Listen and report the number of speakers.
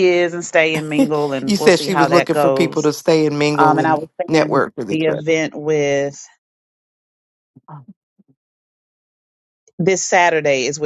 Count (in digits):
2